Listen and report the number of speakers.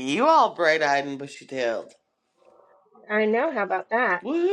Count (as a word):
two